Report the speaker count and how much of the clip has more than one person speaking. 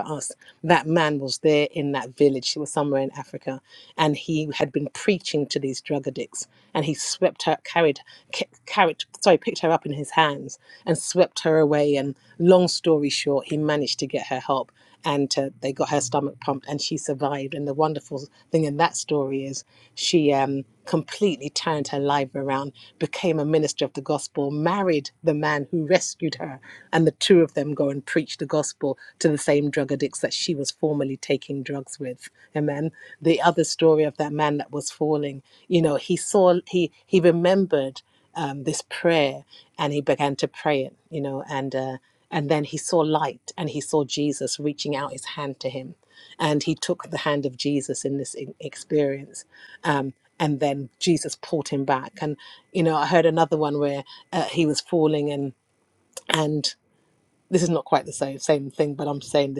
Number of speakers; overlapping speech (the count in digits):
1, no overlap